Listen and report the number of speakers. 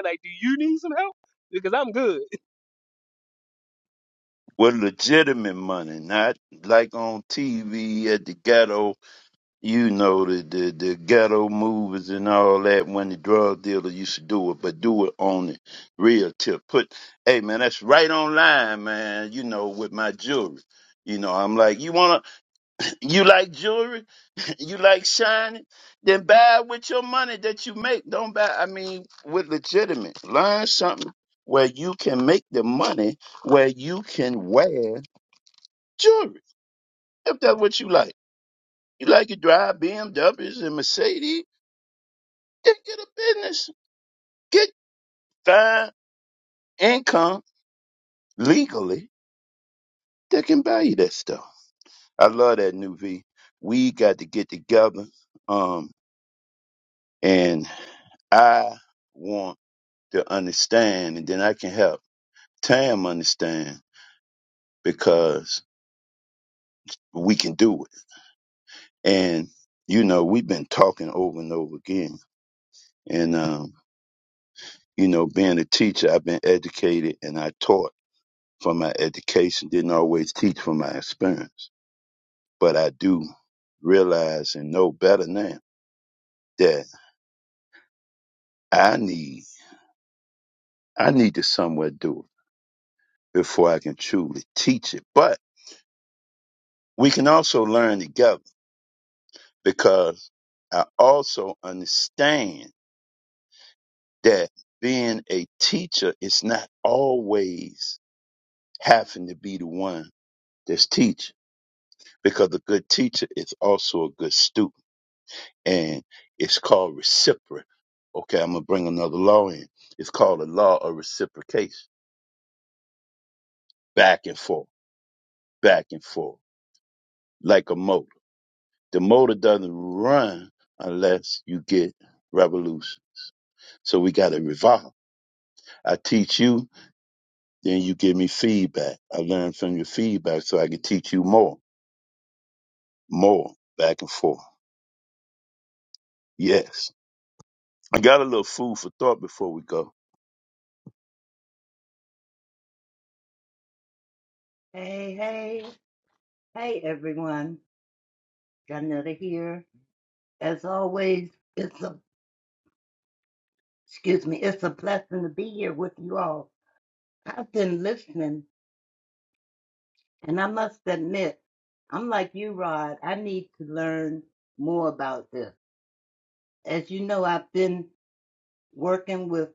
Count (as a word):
three